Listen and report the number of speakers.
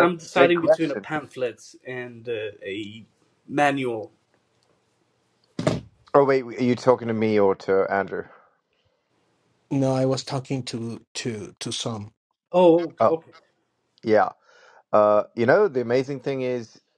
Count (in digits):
3